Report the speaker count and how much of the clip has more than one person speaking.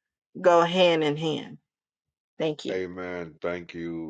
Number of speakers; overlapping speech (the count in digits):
2, about 1%